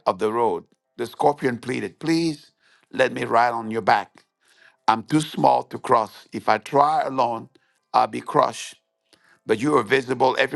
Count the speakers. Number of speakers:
1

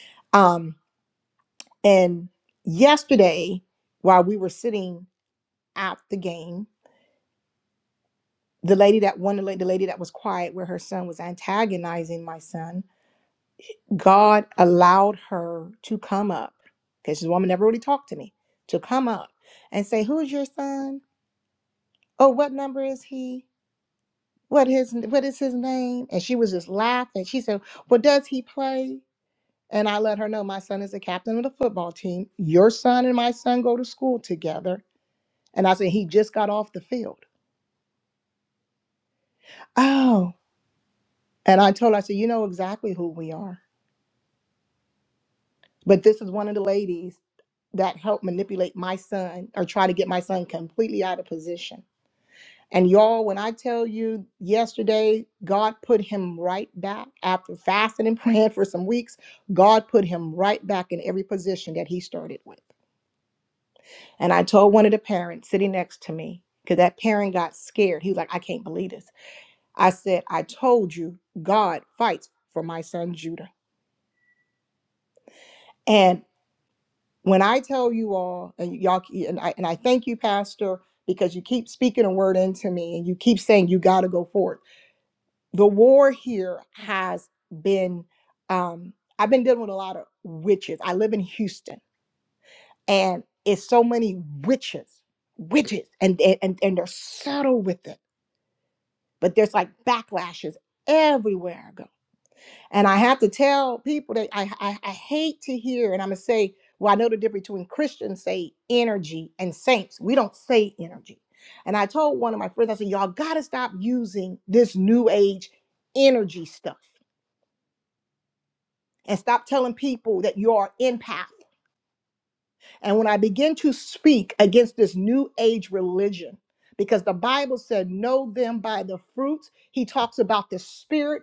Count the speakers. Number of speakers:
1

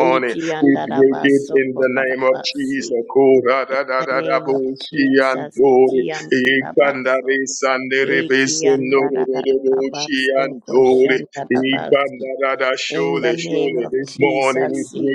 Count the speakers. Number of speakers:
2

